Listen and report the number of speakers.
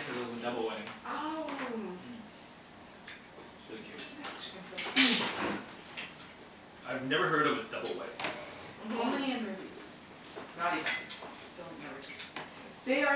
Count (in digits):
4